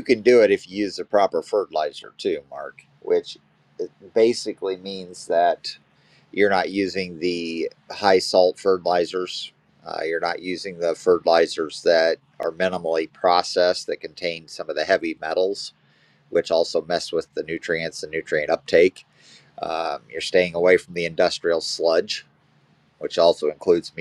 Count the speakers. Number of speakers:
one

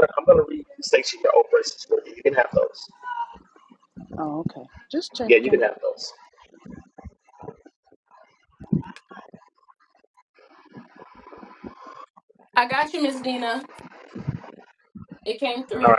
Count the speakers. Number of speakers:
three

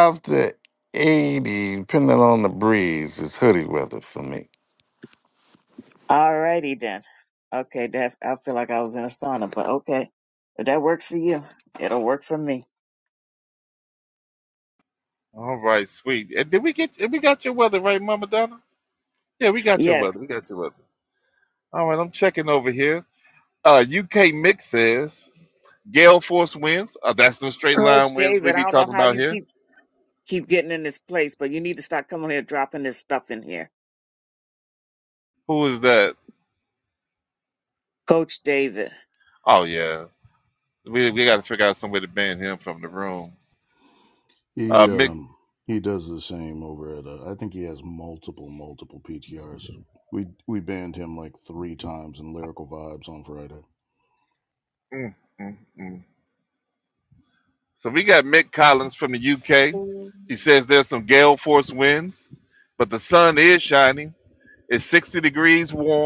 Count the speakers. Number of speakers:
four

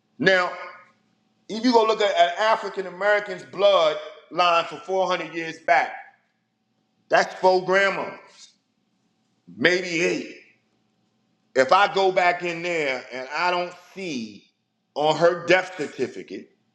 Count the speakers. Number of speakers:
one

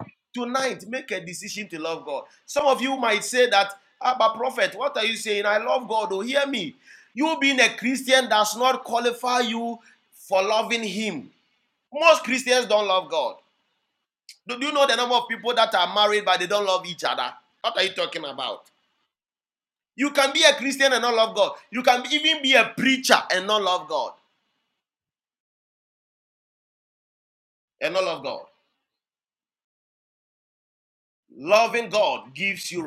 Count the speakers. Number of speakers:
one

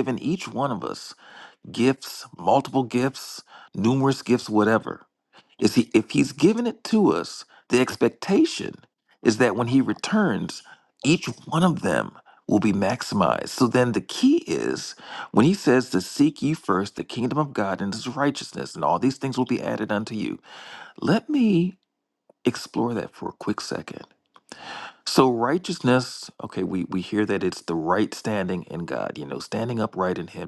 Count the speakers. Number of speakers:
one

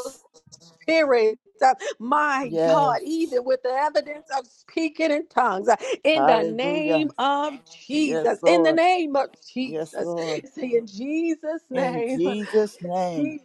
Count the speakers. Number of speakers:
two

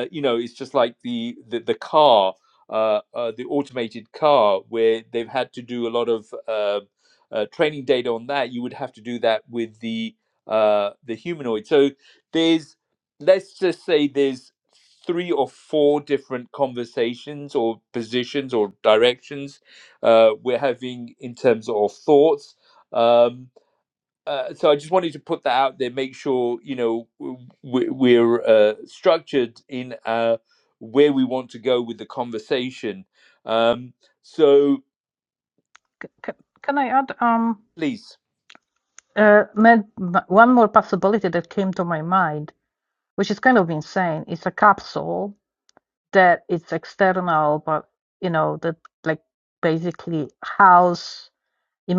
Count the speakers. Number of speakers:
two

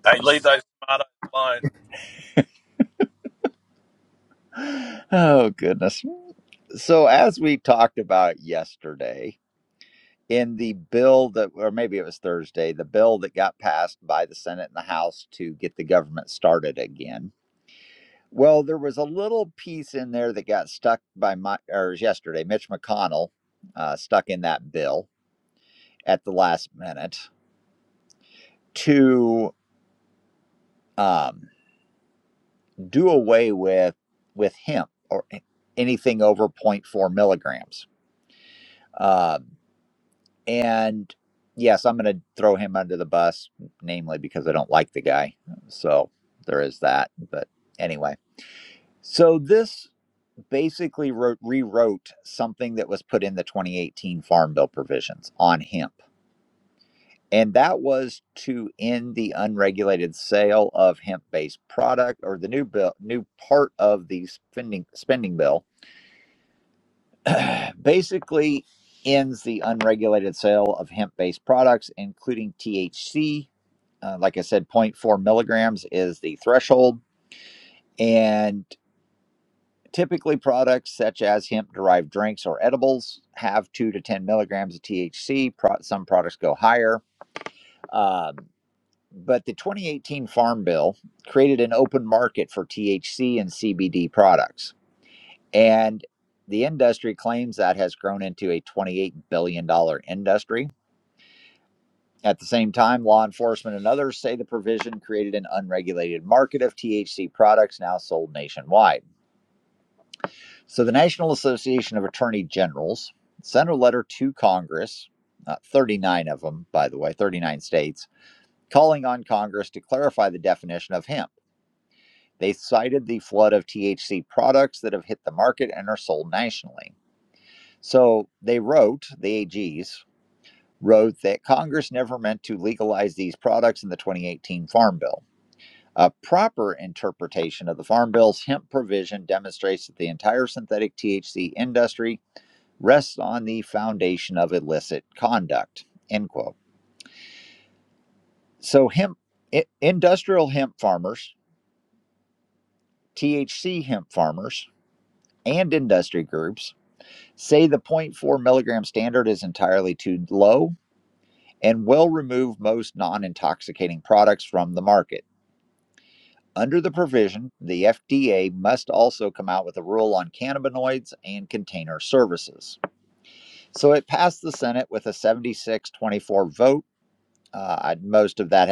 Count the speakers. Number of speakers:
two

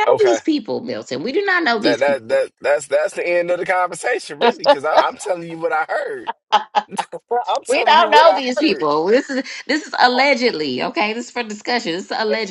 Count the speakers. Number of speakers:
two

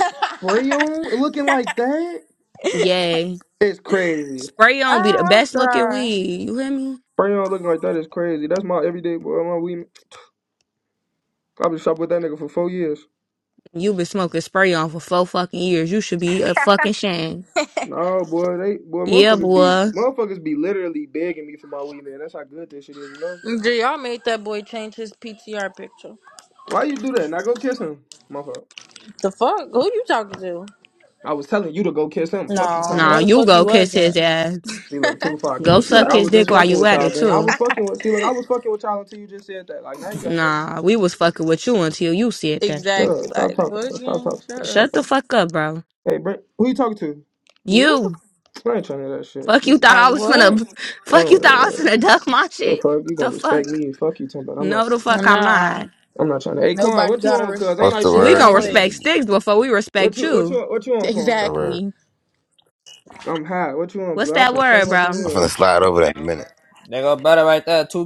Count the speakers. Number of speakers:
five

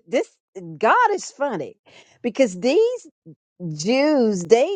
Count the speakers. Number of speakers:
one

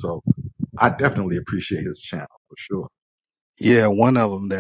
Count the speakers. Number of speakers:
two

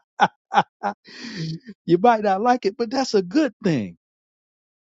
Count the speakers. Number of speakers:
one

